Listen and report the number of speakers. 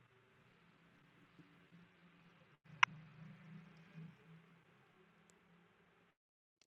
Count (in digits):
0